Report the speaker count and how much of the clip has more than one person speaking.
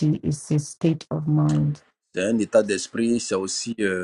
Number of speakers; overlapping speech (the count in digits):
2, no overlap